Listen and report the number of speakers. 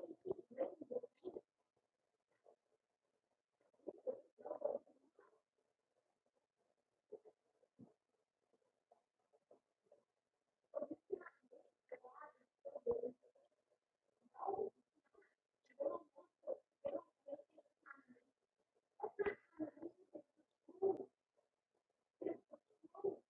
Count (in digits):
0